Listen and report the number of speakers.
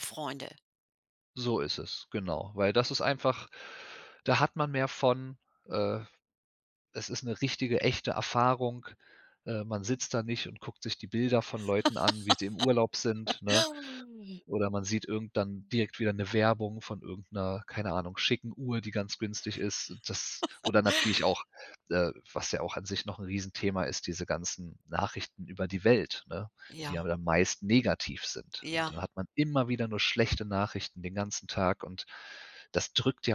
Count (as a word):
two